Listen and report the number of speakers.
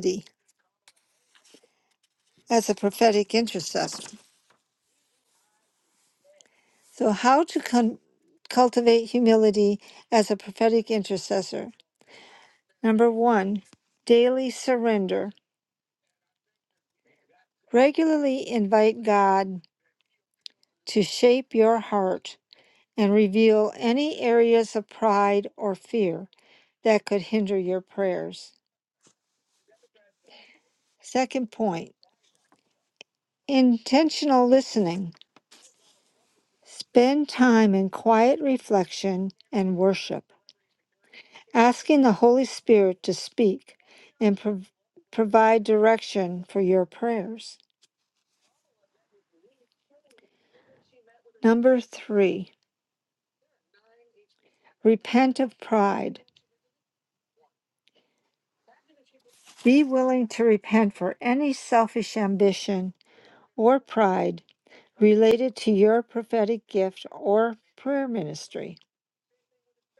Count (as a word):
one